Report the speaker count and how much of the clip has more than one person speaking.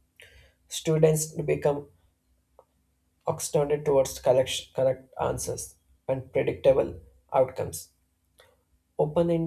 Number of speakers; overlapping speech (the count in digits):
1, no overlap